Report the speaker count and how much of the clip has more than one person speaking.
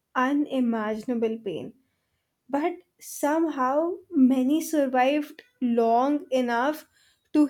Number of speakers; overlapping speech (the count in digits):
1, no overlap